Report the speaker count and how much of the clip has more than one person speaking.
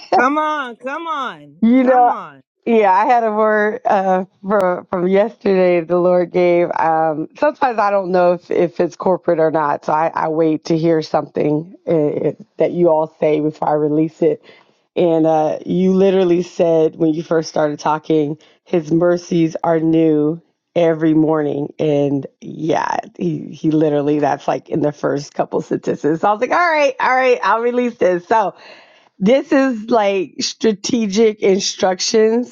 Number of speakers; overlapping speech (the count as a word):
two, about 1%